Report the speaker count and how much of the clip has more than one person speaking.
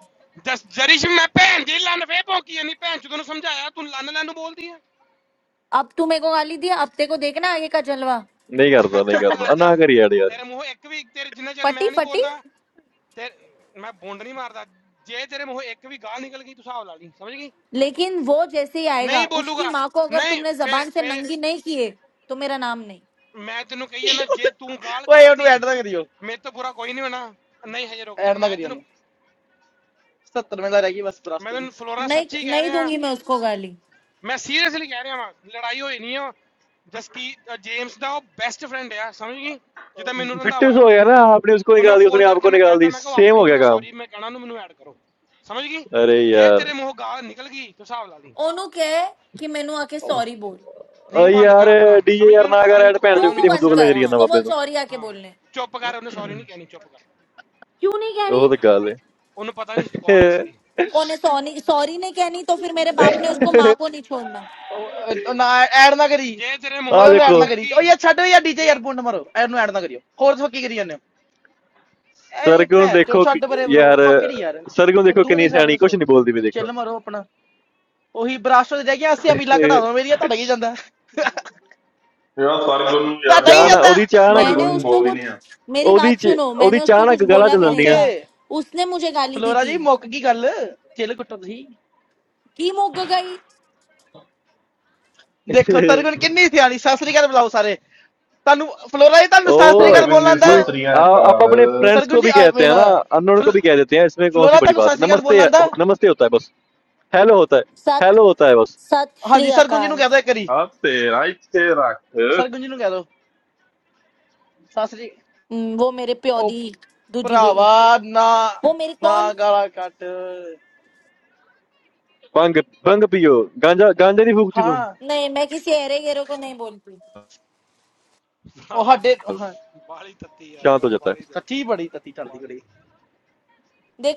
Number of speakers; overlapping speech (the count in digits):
5, about 20%